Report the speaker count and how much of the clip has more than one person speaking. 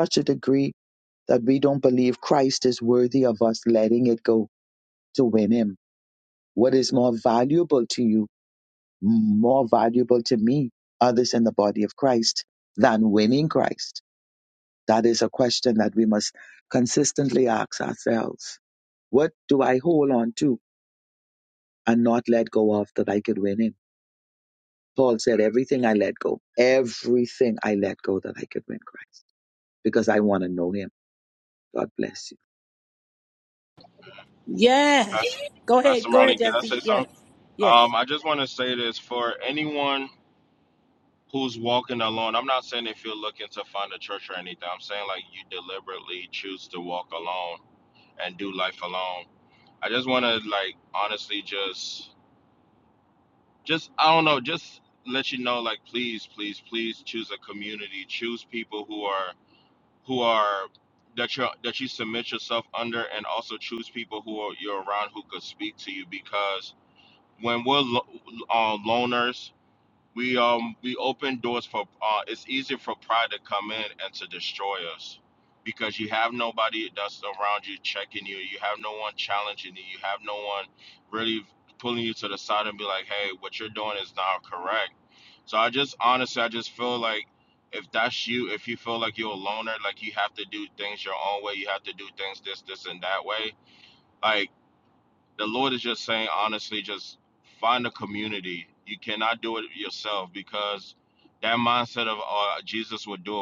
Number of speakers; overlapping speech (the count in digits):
3, about 1%